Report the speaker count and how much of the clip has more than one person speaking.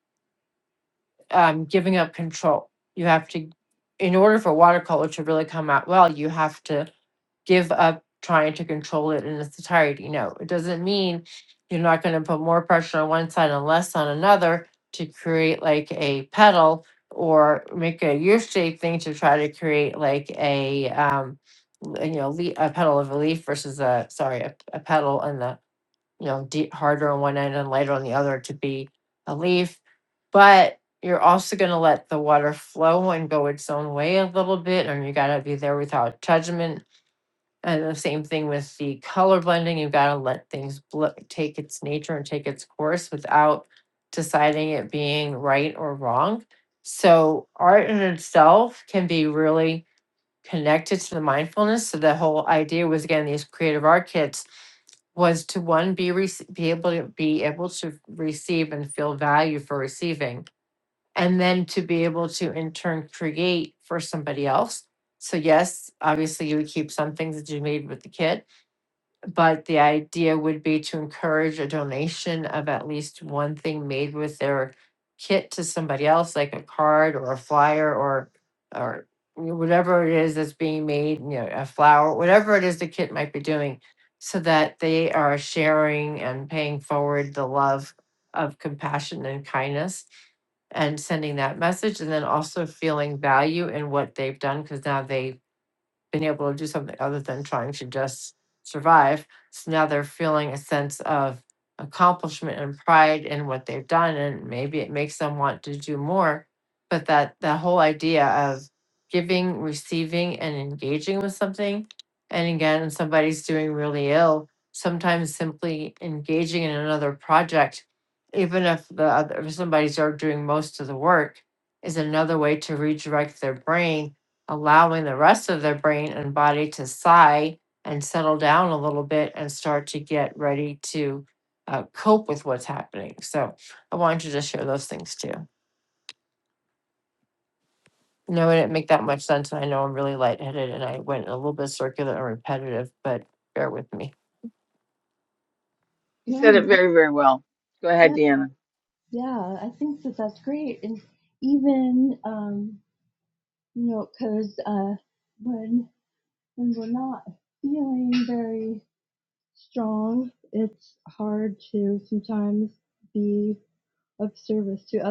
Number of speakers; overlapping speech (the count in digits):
3, under 1%